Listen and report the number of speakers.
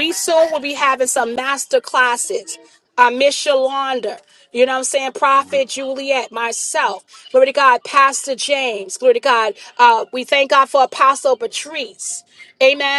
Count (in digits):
1